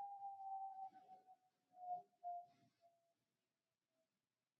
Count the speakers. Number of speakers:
0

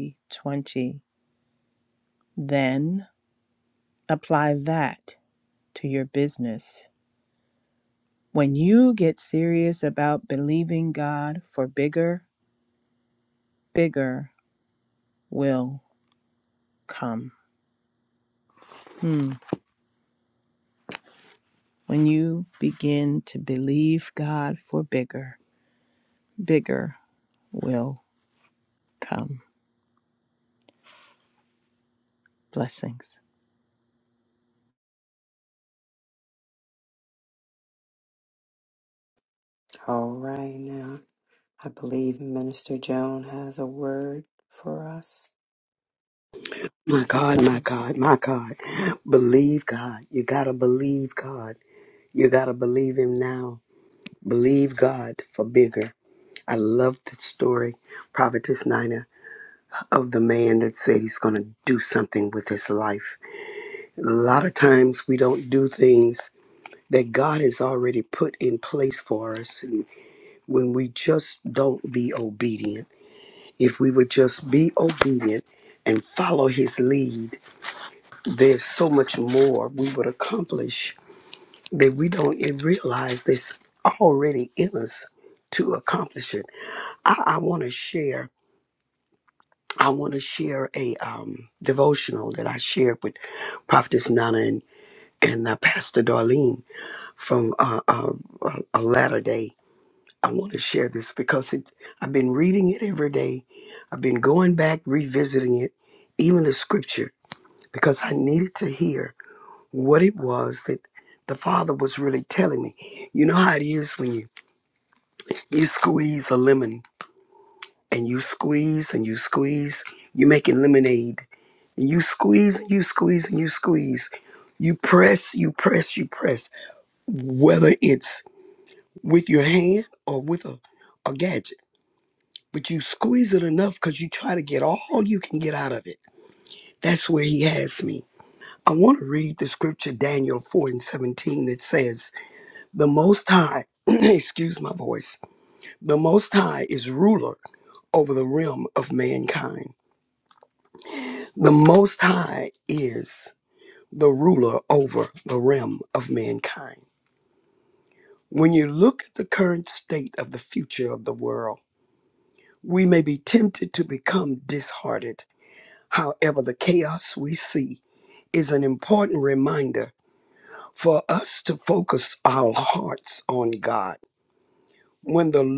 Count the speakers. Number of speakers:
3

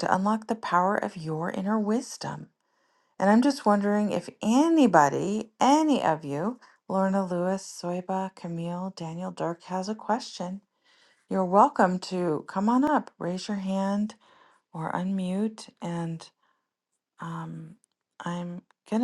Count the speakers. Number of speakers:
1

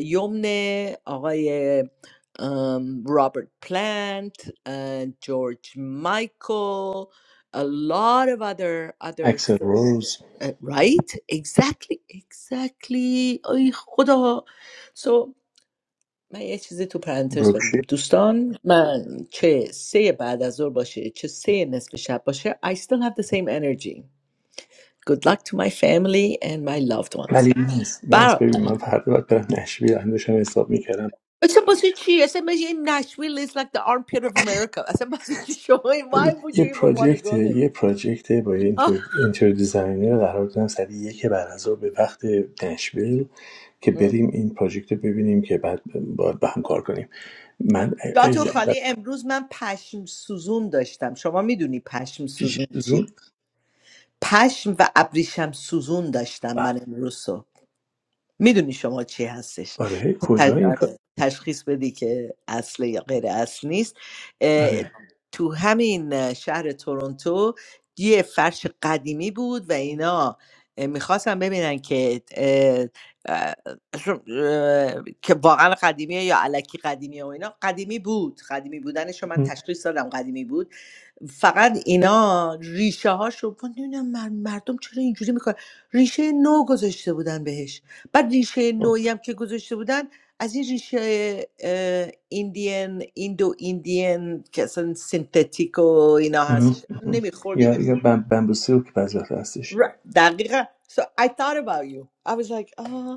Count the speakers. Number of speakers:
2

